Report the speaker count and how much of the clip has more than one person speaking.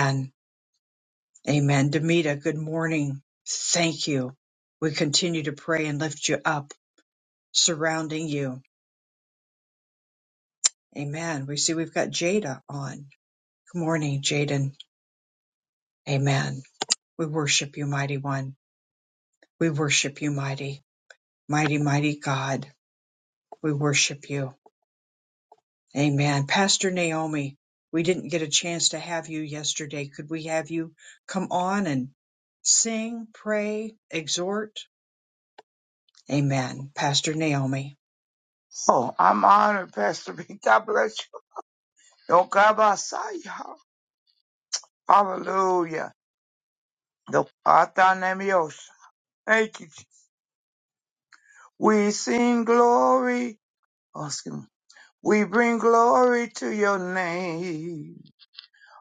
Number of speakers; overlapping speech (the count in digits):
2, no overlap